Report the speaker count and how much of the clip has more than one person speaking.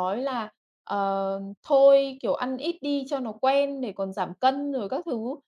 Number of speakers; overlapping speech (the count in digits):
1, no overlap